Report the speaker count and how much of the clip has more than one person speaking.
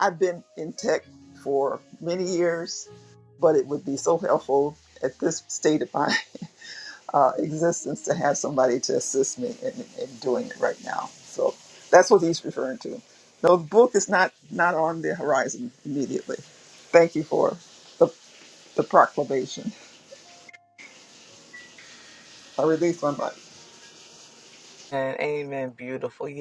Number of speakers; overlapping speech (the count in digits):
2, no overlap